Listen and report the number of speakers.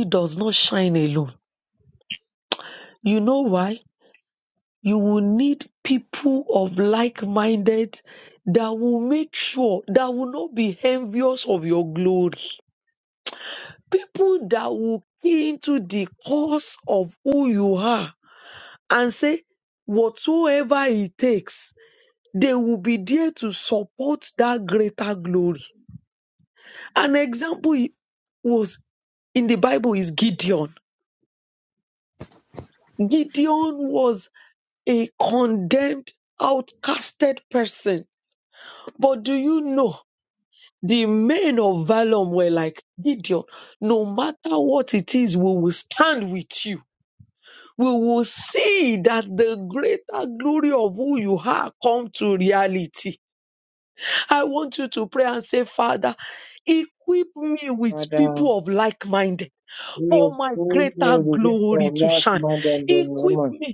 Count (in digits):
2